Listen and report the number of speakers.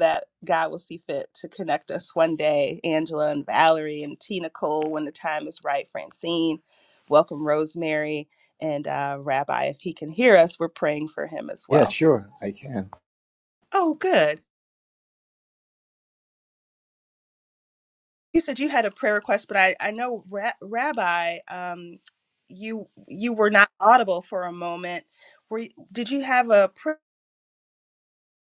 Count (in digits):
2